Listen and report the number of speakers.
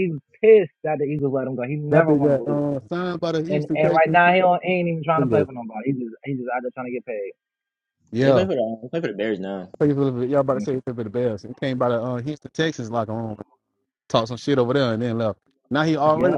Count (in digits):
3